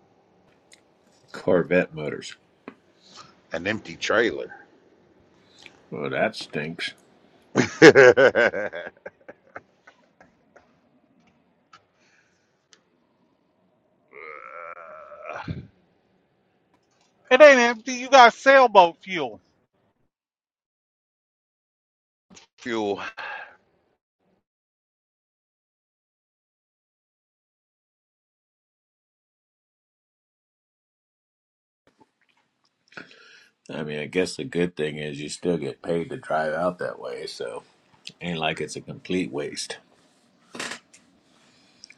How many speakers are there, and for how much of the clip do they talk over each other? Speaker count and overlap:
three, no overlap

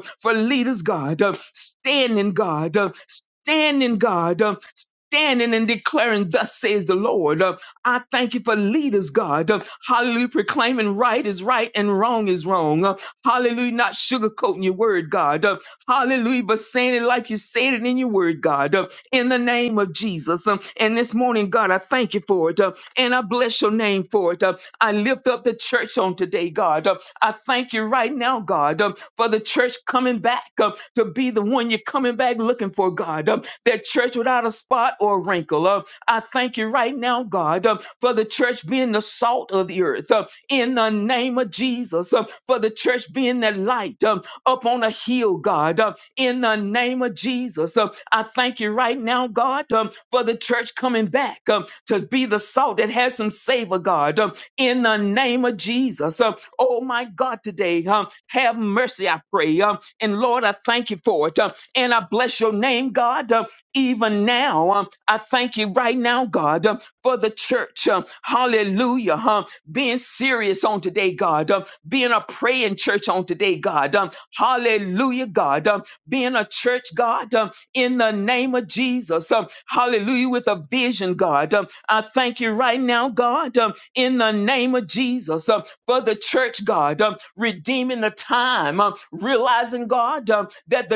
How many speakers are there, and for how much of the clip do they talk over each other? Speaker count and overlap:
one, no overlap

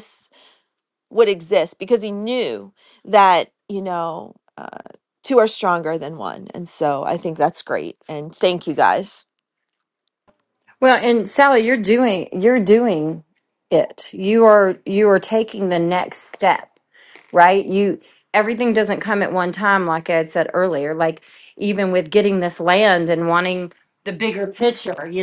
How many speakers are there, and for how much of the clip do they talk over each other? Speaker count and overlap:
two, no overlap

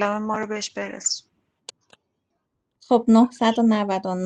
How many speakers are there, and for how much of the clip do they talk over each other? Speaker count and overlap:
two, no overlap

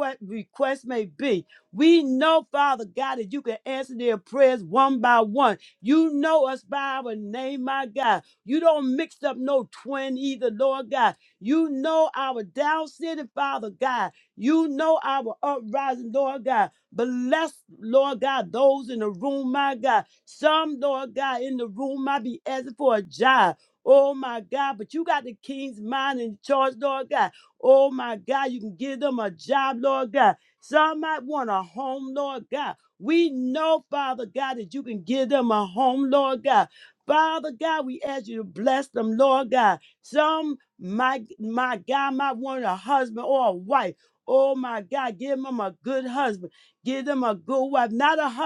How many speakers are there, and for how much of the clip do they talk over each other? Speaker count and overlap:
one, no overlap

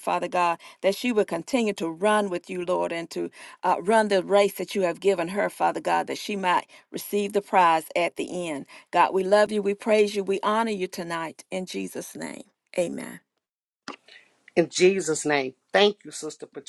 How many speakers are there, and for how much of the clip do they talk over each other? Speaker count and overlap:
two, no overlap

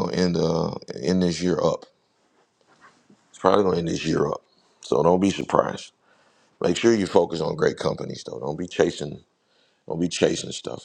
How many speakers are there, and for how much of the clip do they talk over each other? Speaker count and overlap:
one, no overlap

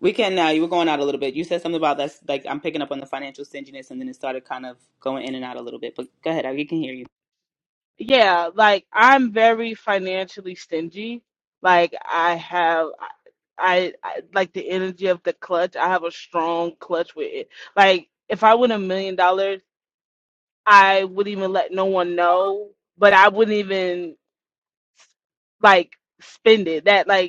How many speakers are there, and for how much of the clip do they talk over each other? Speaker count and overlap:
two, no overlap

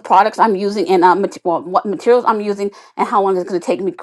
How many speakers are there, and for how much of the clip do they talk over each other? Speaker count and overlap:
one, no overlap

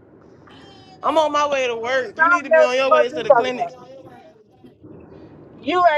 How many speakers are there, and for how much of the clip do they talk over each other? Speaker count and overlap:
two, about 25%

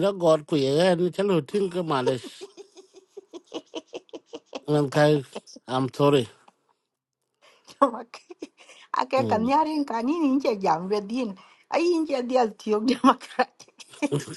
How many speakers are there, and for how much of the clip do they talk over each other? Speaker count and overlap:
two, about 2%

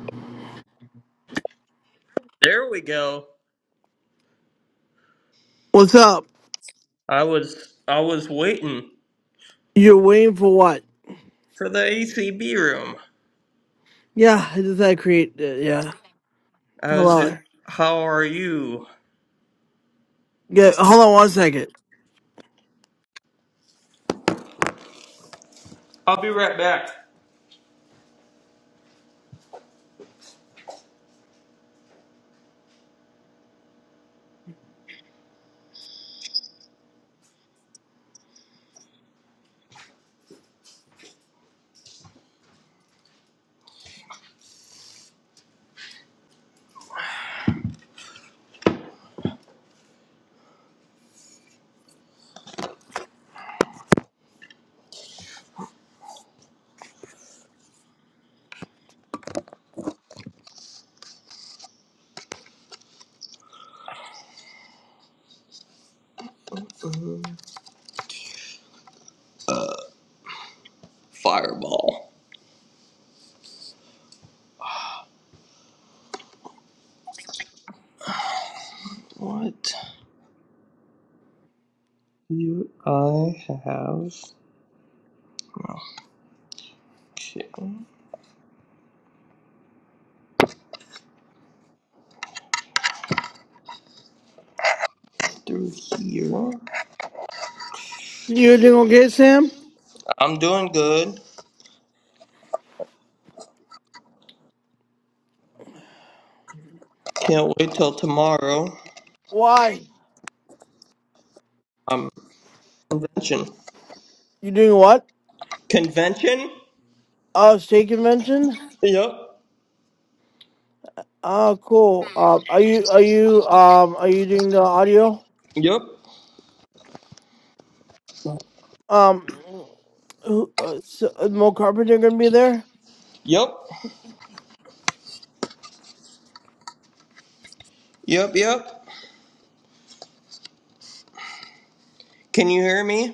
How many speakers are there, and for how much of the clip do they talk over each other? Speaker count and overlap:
two, under 1%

